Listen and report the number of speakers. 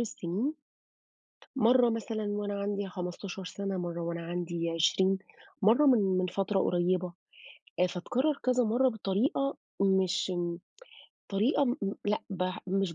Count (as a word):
one